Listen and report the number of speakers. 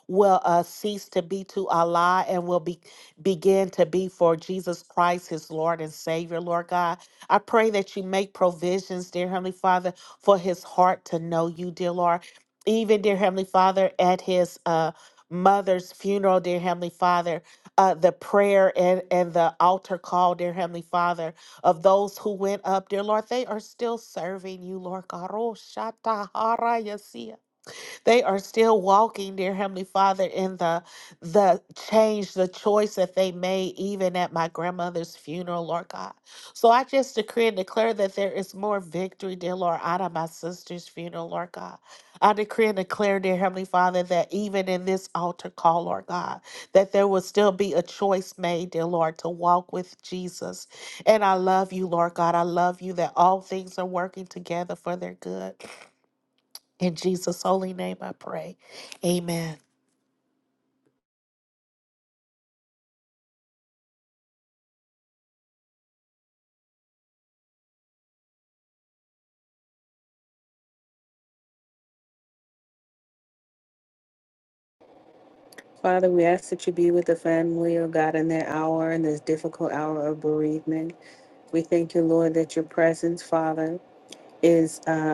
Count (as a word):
two